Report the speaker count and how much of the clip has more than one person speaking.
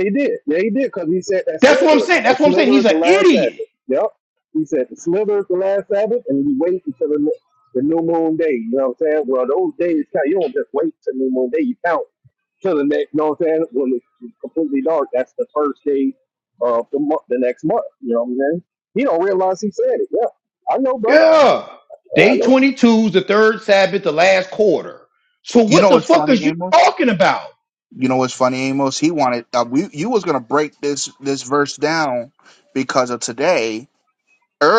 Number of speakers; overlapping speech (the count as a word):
three, about 10%